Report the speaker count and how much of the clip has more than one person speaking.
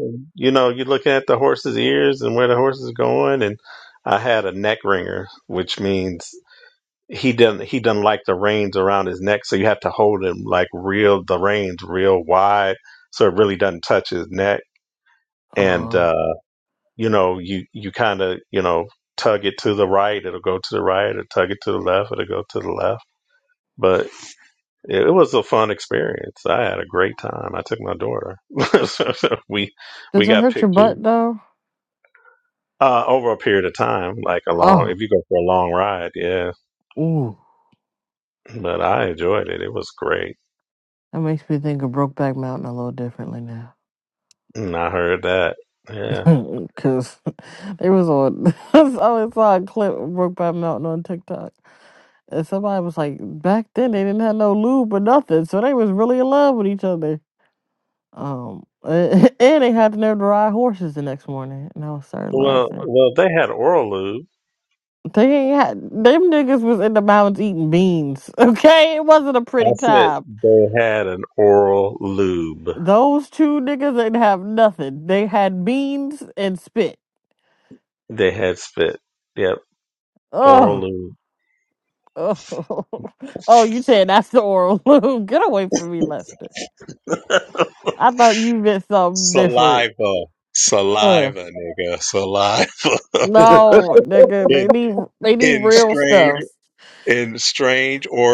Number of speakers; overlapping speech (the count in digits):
2, about 5%